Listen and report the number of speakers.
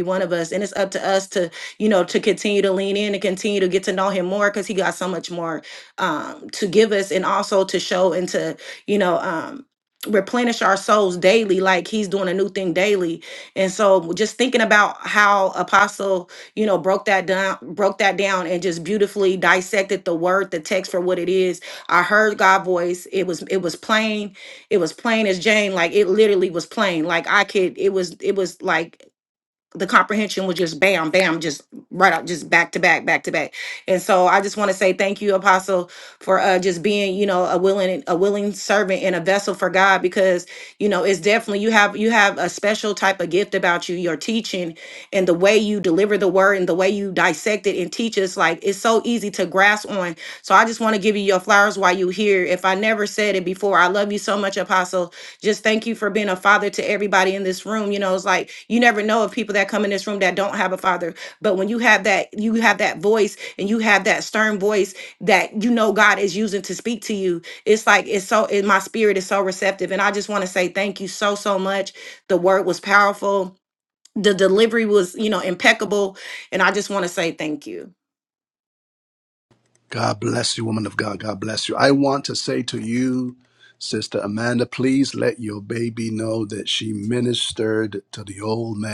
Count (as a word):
two